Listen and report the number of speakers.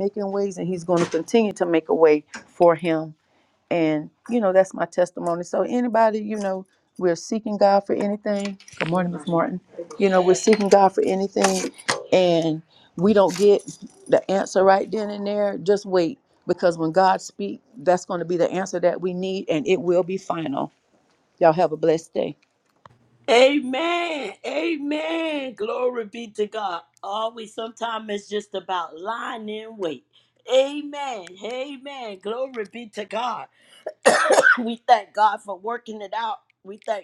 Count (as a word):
two